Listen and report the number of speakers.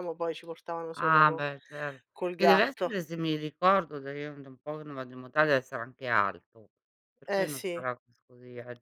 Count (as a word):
two